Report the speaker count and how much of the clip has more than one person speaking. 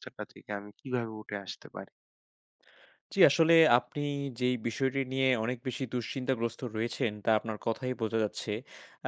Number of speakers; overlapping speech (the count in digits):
2, no overlap